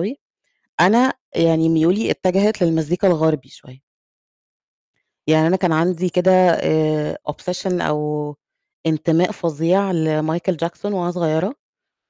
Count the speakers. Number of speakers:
one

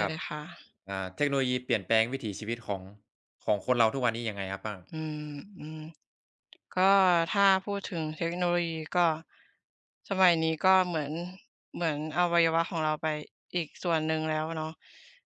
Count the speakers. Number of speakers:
two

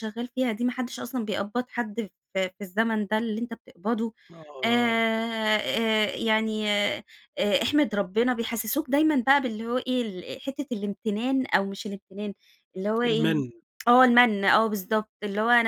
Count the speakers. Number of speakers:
two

